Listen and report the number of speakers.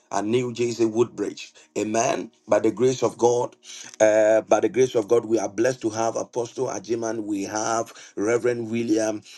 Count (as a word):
one